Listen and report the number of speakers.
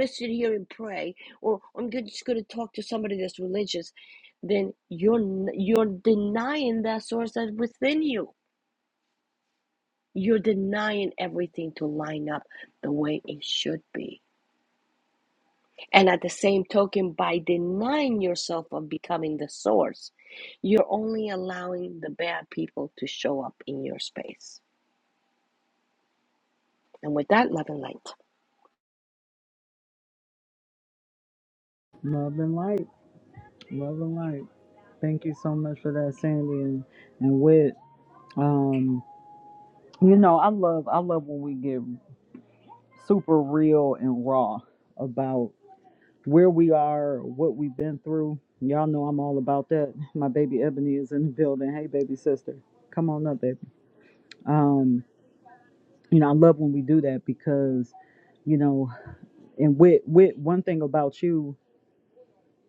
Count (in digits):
2